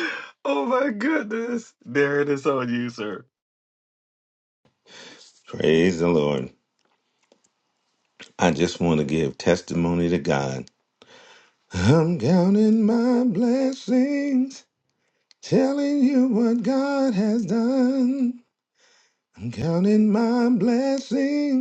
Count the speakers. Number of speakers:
two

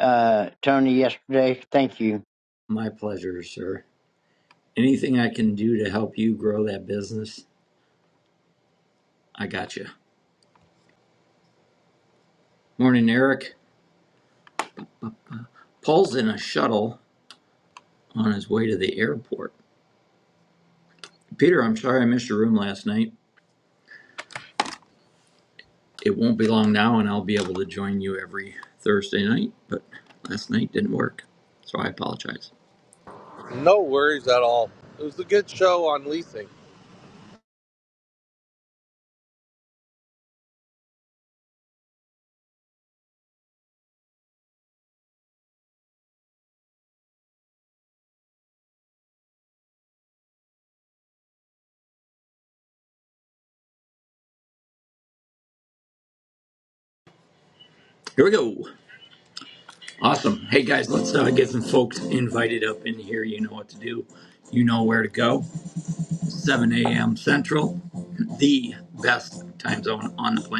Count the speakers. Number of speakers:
three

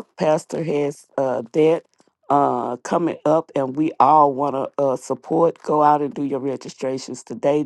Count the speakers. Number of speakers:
one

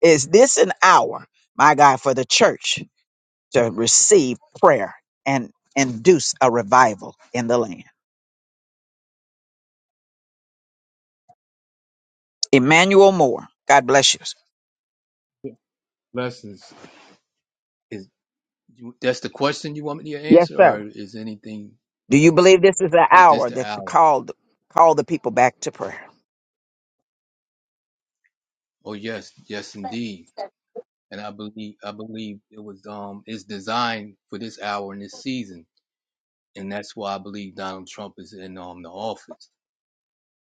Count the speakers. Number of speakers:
two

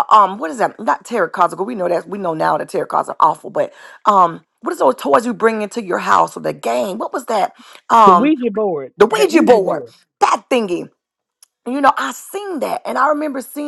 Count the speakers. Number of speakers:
two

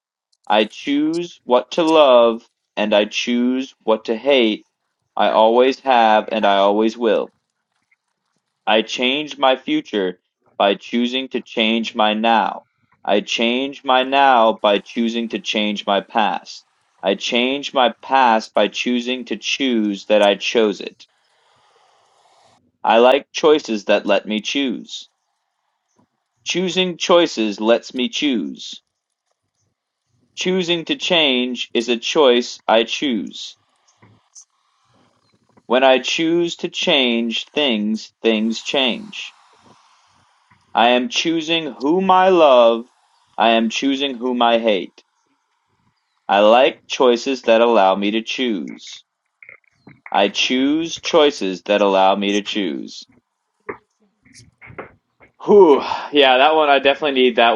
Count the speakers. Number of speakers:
one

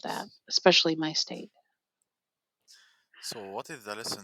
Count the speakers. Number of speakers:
two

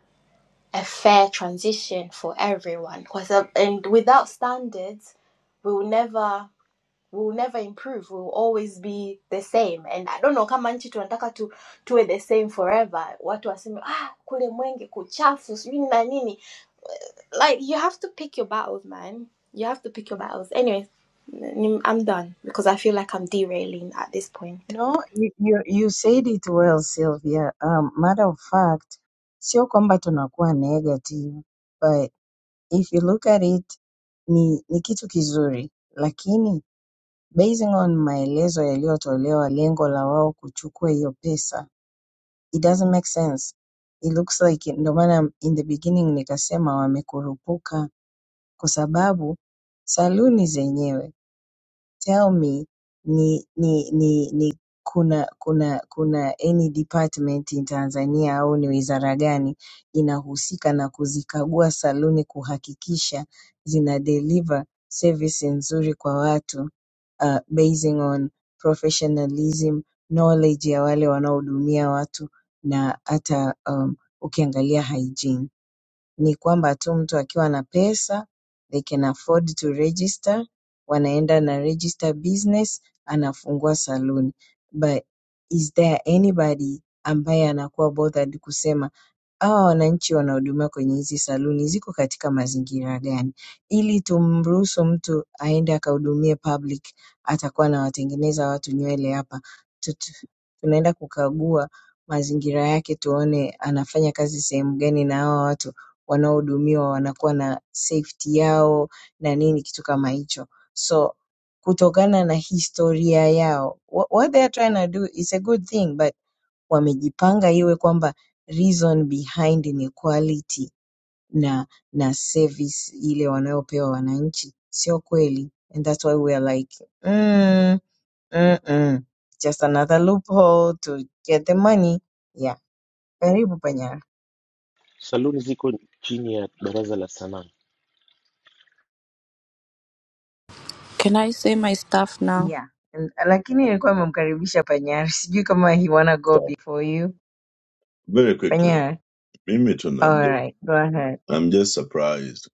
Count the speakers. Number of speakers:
five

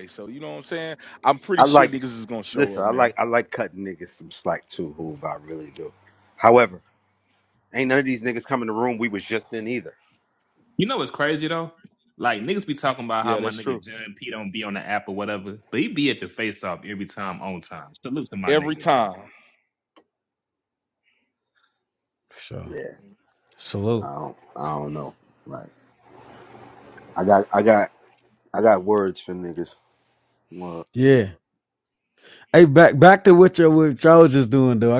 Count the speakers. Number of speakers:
four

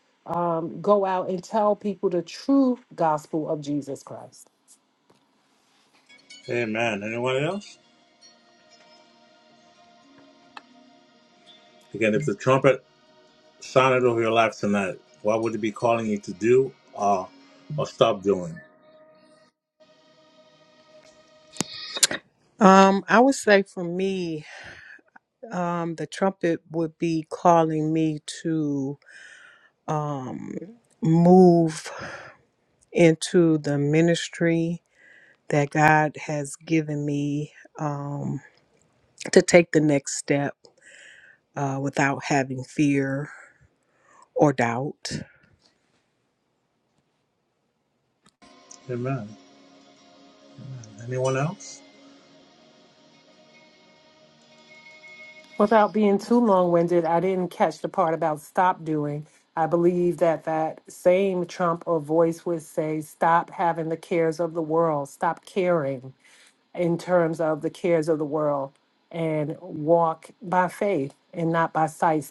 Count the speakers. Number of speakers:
three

